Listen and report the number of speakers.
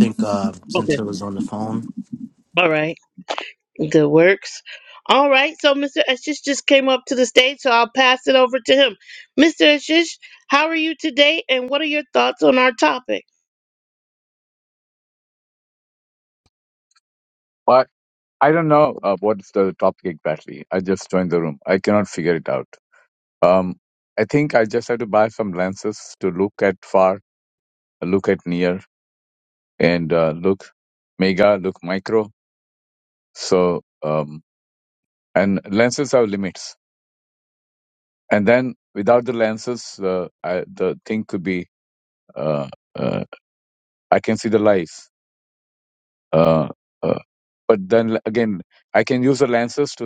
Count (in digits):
3